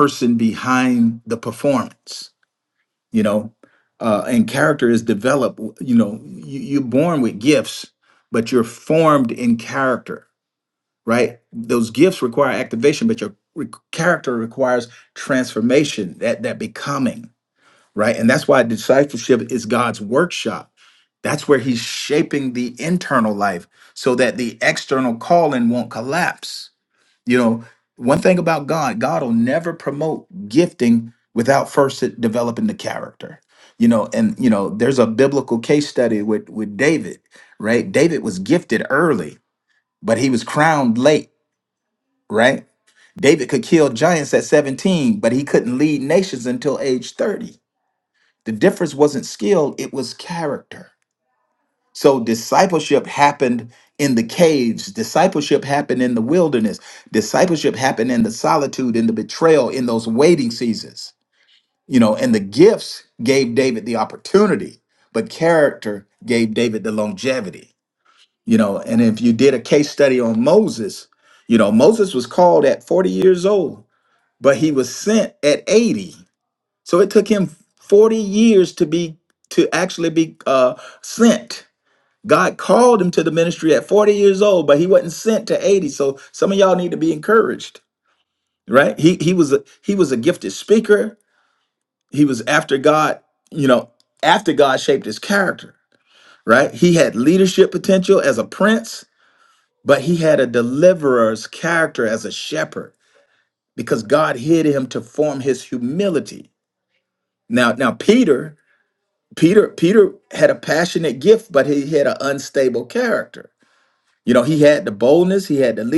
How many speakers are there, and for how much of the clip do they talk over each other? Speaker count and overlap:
1, no overlap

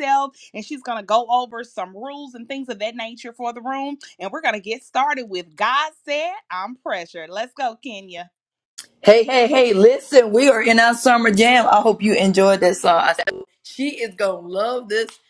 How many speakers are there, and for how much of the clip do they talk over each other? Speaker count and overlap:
2, no overlap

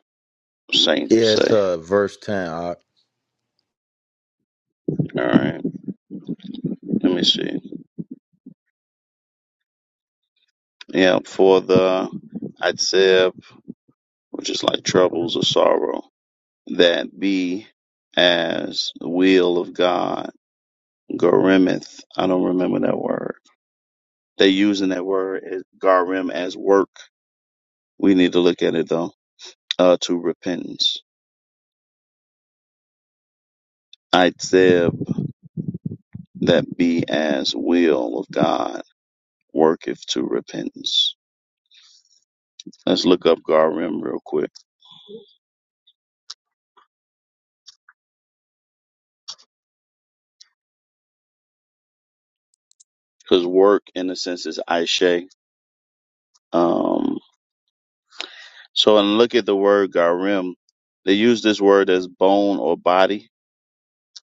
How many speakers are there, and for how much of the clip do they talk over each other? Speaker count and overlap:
2, about 1%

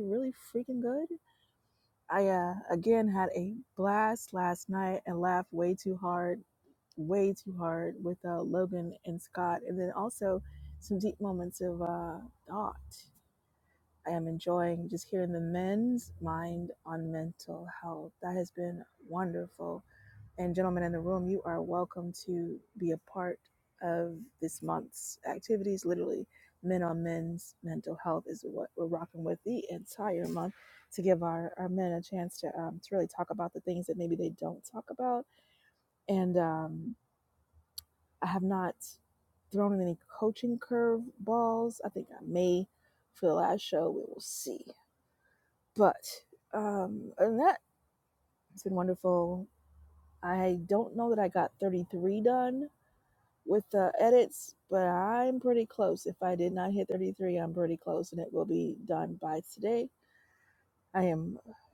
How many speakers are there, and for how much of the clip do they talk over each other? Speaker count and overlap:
1, no overlap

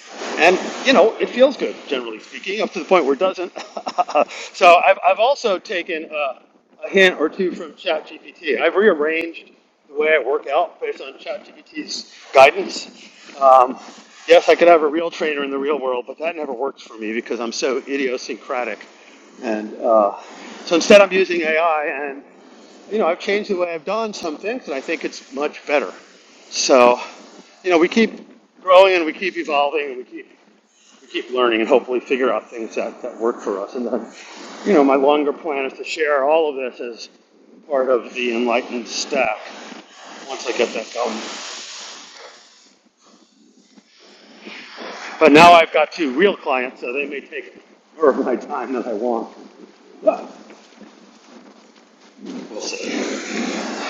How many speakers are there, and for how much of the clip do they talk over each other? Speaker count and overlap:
1, no overlap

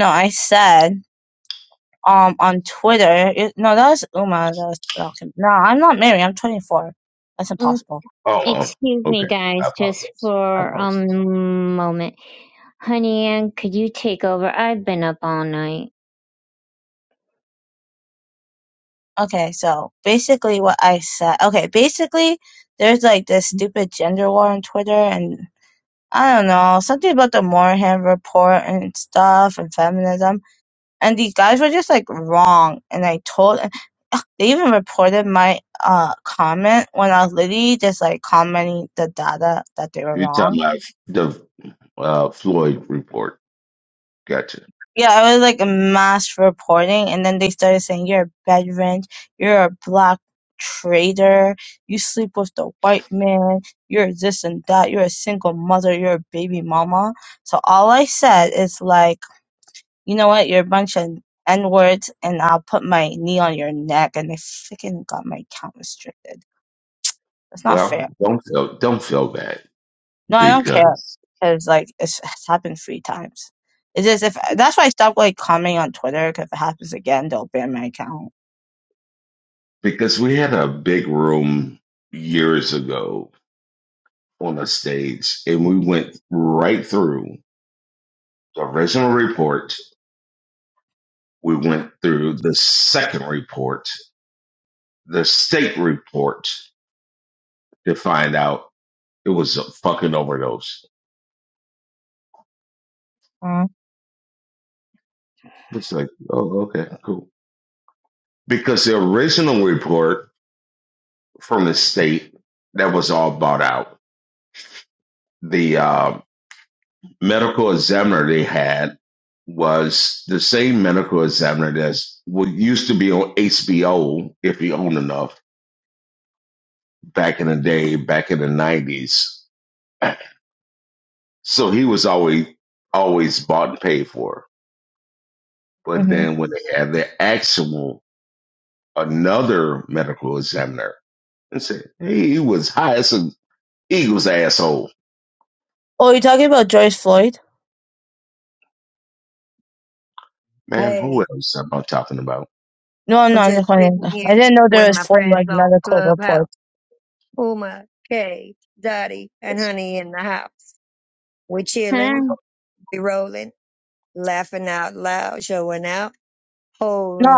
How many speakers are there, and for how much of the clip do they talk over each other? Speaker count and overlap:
4, about 4%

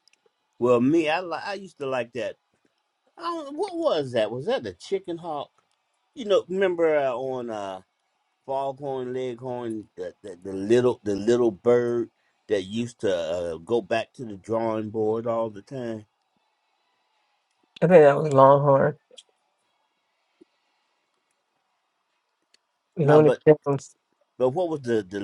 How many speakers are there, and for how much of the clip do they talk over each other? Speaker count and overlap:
2, about 1%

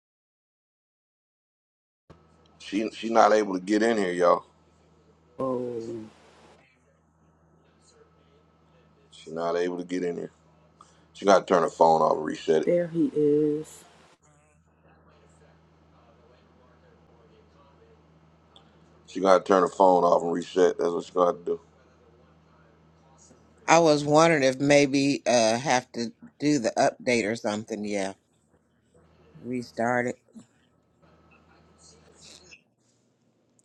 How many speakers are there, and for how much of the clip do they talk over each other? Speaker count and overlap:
3, under 1%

